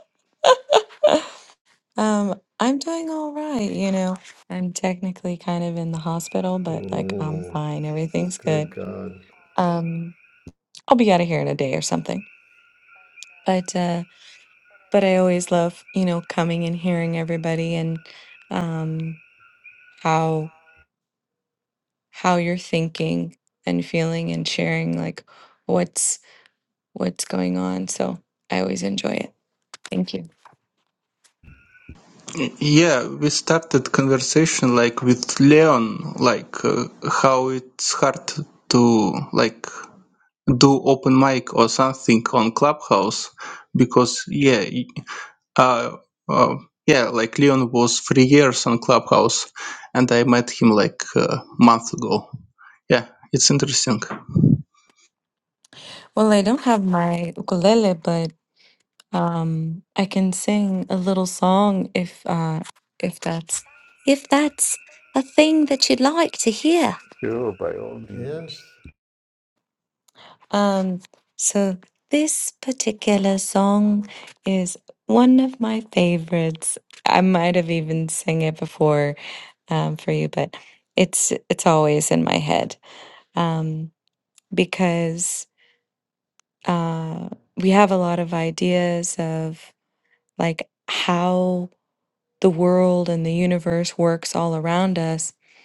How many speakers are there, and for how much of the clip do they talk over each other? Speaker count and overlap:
four, about 2%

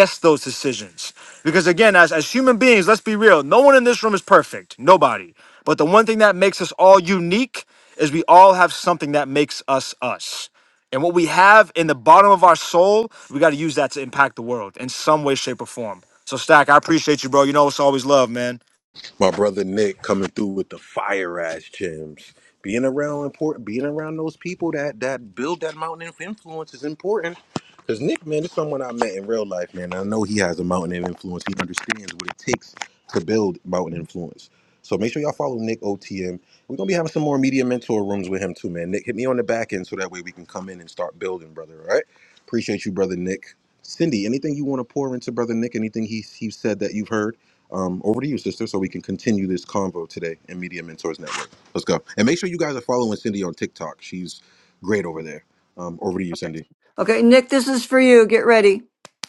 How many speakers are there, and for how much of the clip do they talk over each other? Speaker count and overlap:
three, no overlap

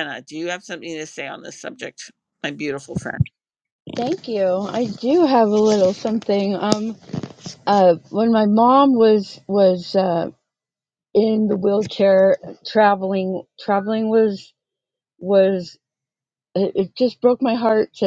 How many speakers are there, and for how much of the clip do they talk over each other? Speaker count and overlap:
two, no overlap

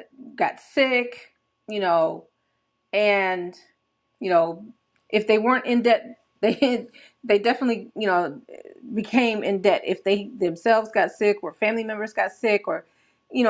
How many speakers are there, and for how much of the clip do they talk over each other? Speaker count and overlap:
one, no overlap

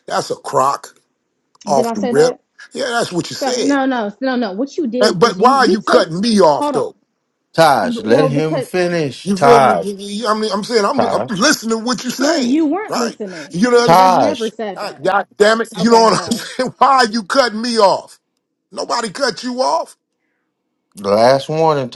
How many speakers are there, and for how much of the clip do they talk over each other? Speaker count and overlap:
three, about 30%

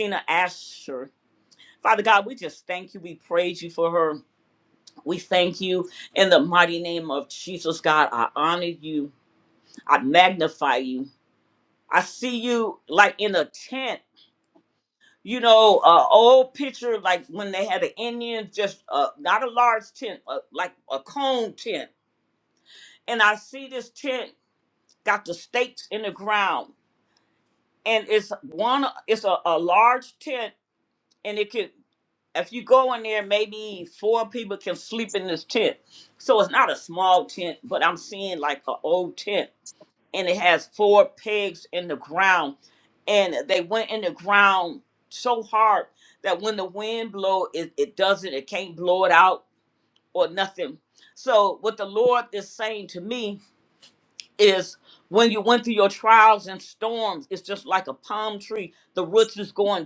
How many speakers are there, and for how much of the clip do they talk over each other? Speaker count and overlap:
one, no overlap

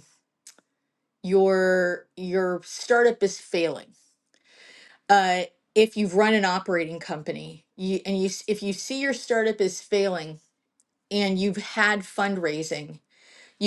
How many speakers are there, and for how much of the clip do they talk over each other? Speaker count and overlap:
one, no overlap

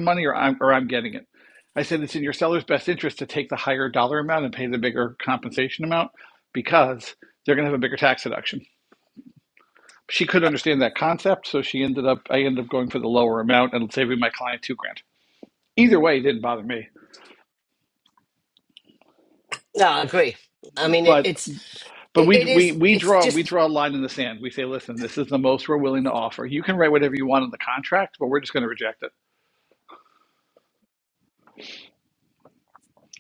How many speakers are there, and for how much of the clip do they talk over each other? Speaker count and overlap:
two, about 5%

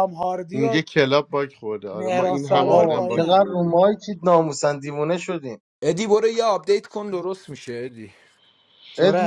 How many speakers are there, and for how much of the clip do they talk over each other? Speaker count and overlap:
four, about 25%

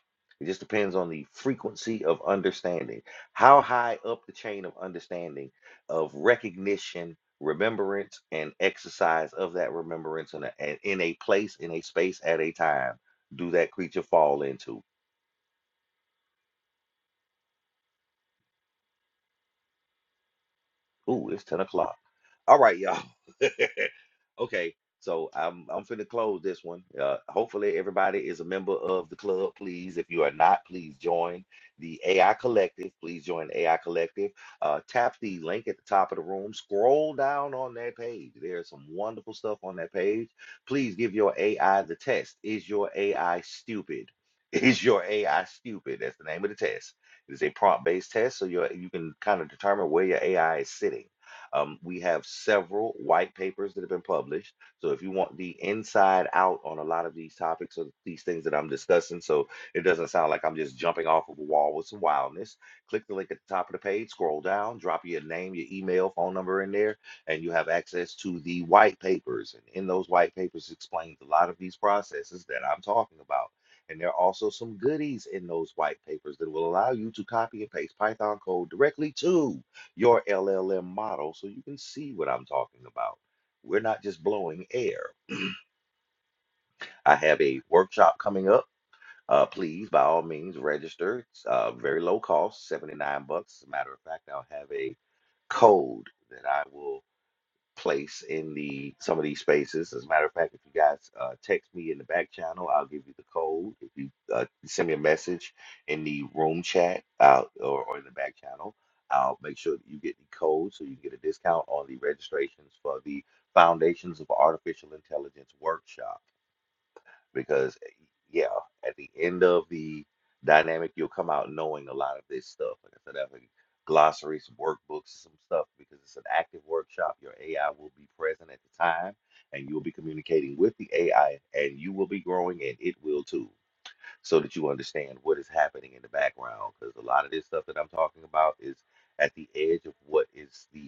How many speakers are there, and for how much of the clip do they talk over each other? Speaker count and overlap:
one, no overlap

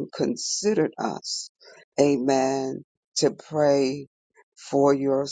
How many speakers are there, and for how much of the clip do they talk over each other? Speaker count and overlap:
one, no overlap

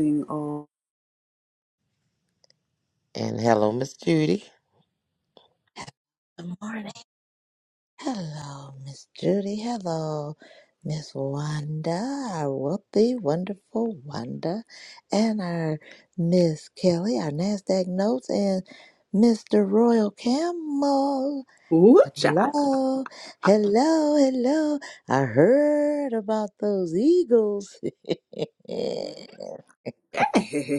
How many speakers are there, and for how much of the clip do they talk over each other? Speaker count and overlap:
three, about 1%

